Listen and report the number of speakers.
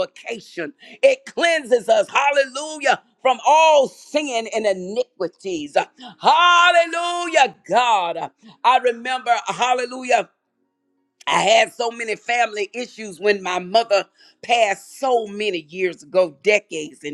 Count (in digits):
1